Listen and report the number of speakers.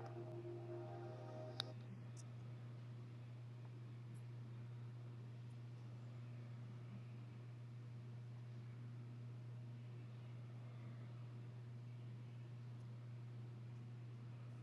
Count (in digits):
0